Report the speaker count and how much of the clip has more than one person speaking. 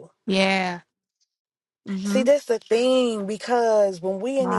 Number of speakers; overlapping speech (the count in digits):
2, about 9%